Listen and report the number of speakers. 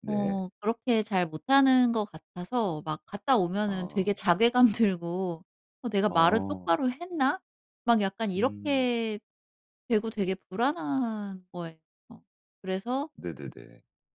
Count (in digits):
2